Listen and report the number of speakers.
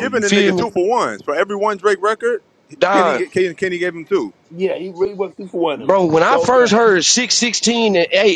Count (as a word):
three